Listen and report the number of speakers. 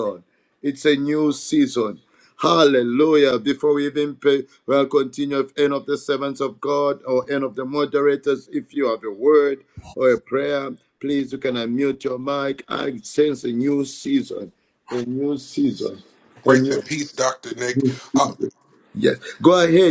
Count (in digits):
2